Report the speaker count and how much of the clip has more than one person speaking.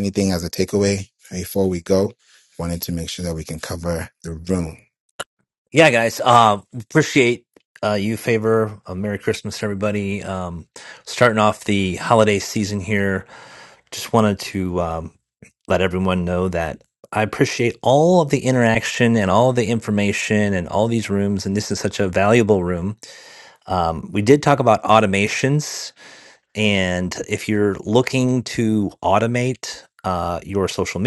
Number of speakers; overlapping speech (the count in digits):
2, no overlap